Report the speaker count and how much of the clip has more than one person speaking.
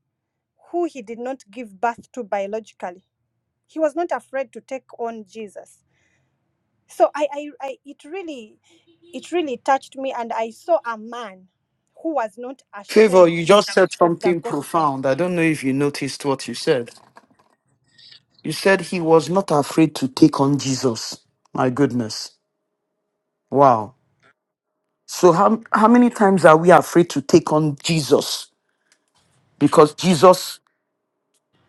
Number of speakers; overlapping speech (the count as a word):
two, about 4%